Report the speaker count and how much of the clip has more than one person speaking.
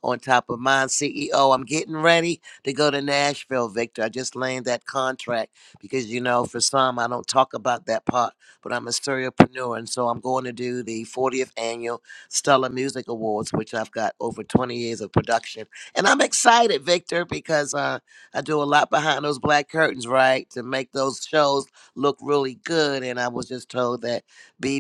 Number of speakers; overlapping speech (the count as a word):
one, no overlap